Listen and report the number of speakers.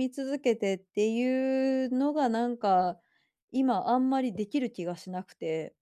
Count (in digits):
1